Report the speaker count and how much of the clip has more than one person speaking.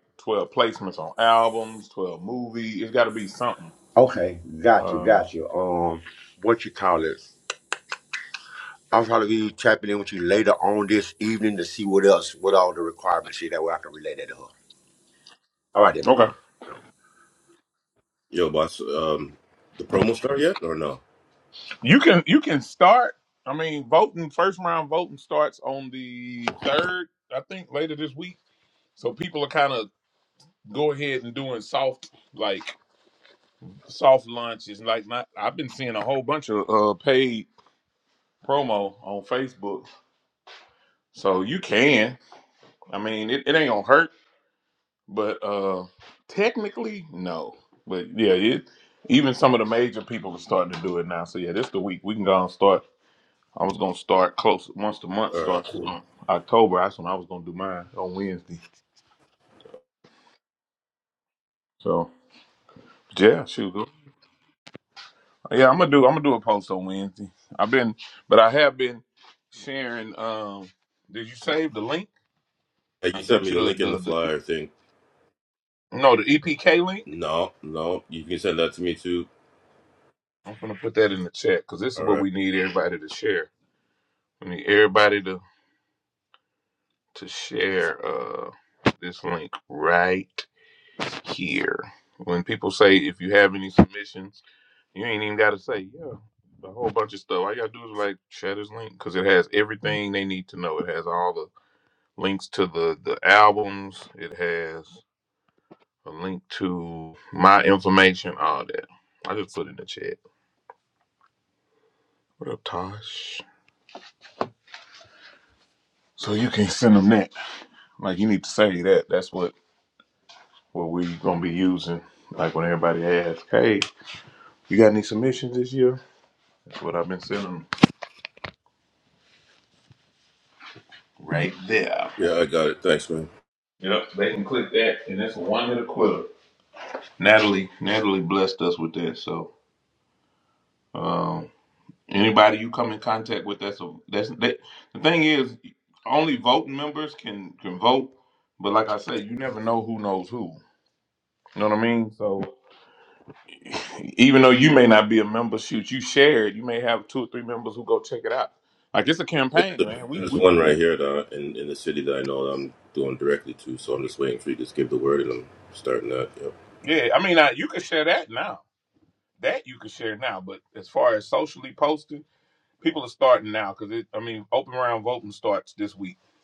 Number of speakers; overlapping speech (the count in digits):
3, about 2%